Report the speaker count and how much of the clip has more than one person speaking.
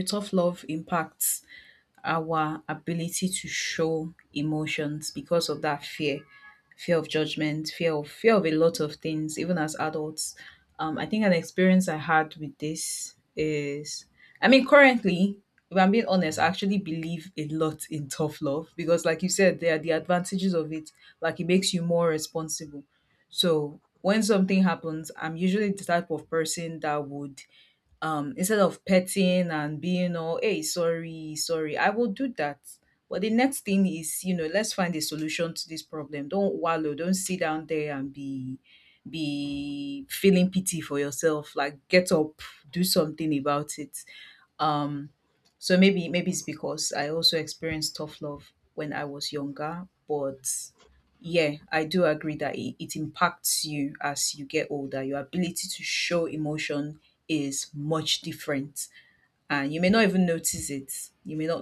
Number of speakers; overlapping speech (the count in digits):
1, no overlap